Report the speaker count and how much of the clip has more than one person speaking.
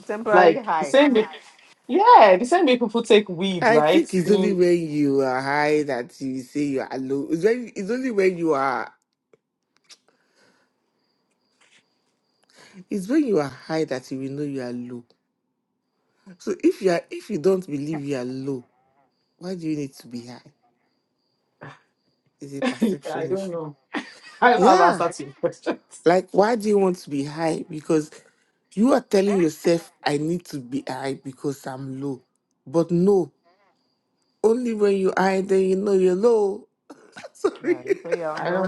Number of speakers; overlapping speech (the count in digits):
3, about 8%